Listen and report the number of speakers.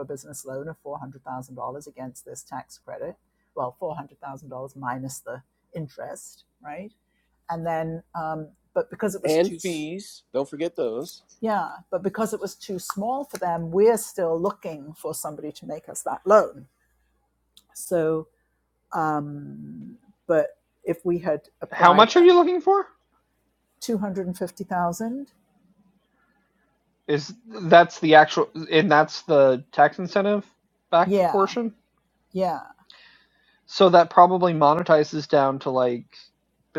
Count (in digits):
3